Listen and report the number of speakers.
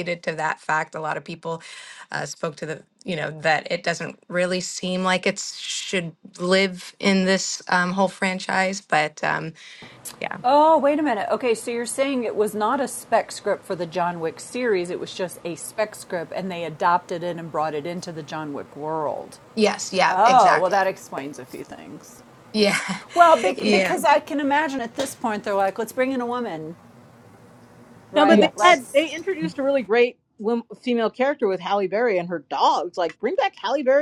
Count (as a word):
three